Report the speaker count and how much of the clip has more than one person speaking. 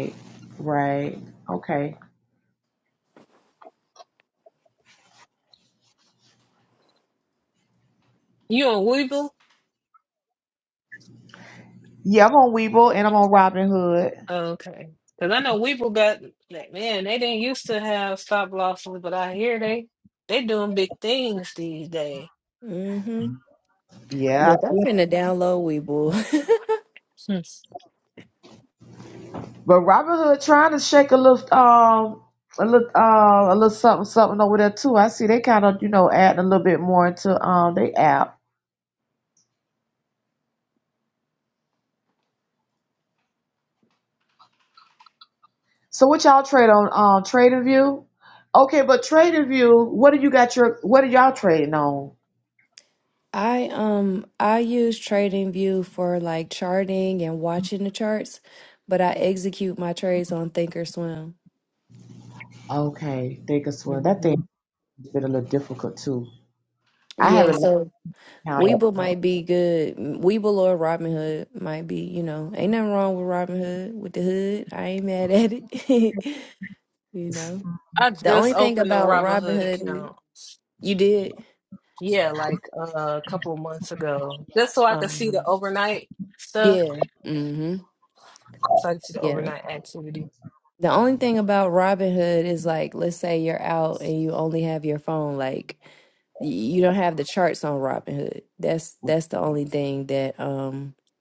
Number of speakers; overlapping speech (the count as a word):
three, about 4%